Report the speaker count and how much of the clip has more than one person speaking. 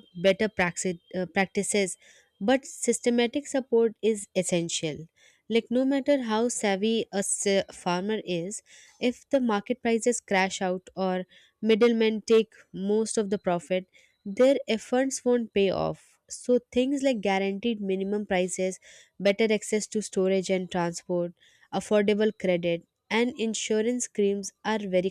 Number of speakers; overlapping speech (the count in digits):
1, no overlap